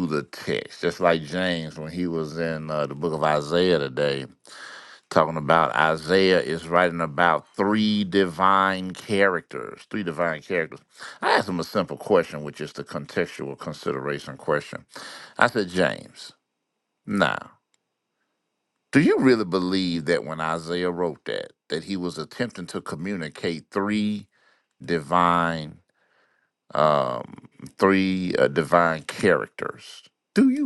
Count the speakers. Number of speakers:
1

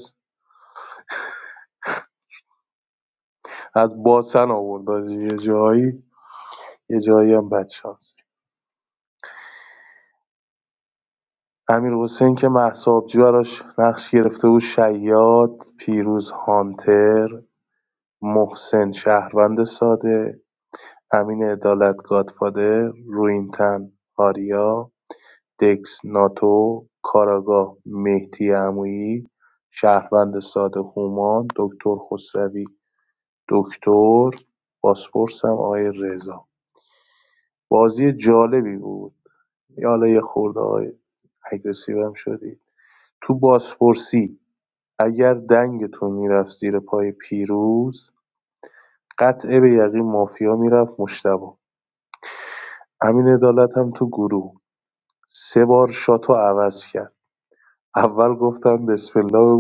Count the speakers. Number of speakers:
1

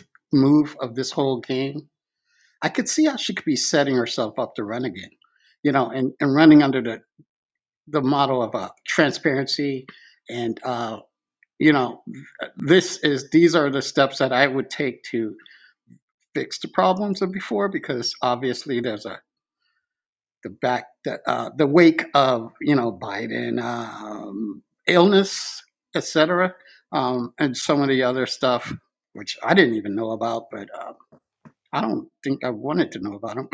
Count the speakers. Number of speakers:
1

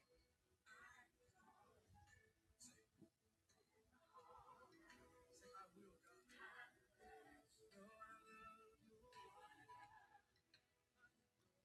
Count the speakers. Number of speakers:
0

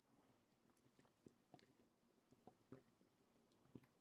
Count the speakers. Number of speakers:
0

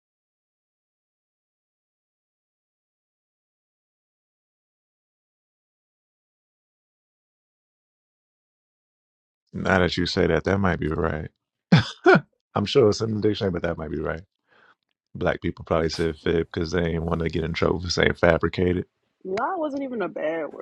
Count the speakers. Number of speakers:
2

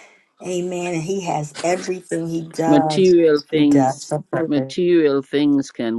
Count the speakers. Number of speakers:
2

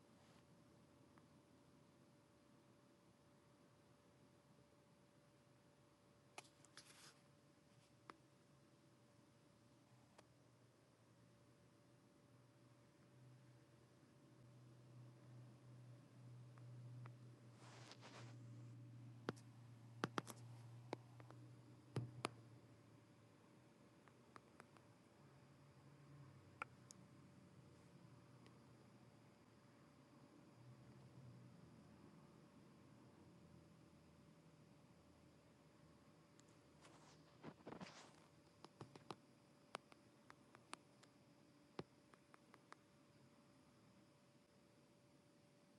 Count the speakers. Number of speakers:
0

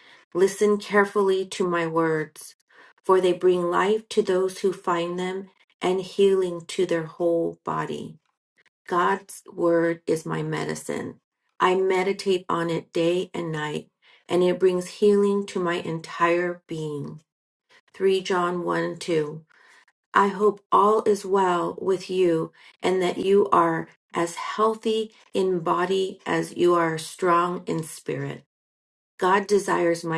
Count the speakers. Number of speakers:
1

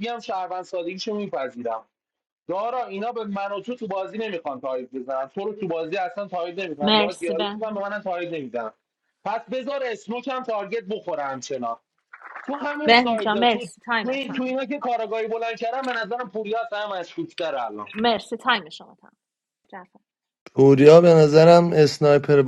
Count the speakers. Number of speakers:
3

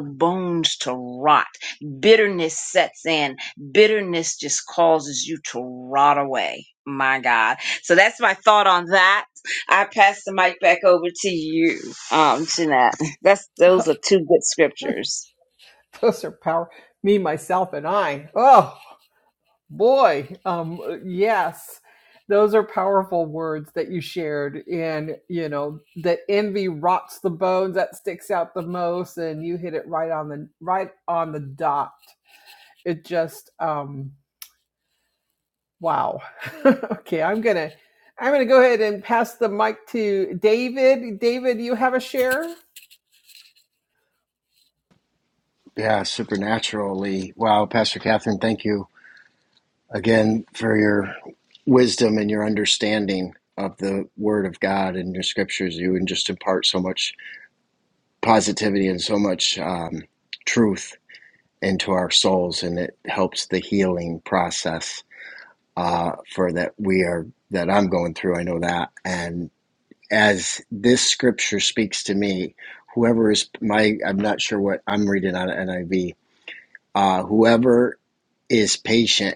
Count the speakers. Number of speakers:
3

